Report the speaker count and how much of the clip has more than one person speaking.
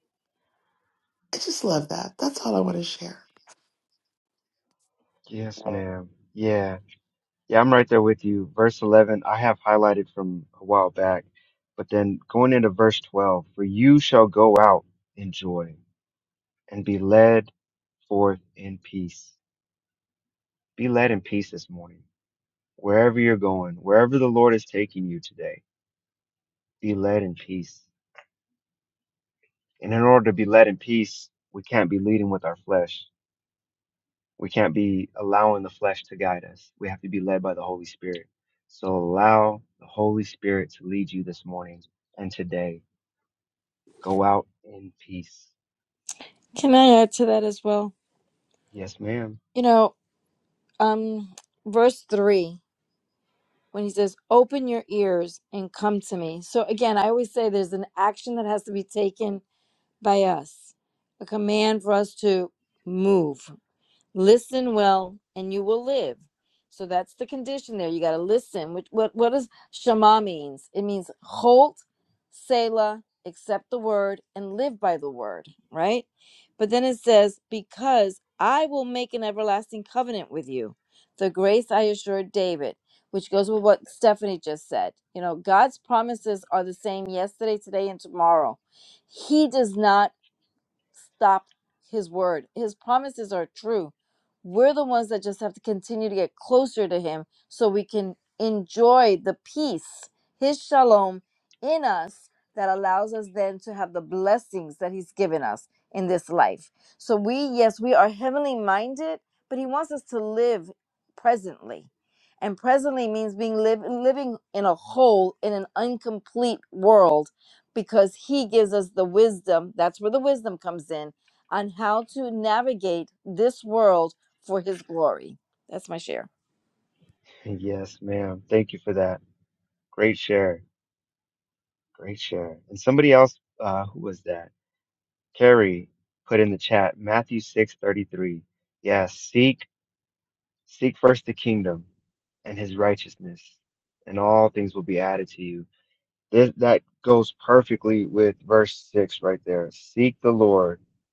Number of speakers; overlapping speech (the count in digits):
3, no overlap